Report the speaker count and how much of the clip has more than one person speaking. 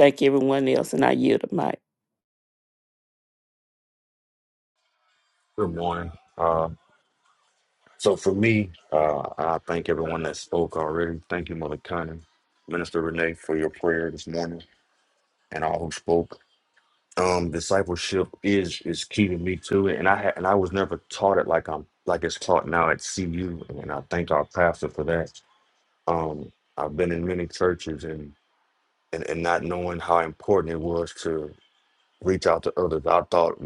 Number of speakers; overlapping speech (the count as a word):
two, no overlap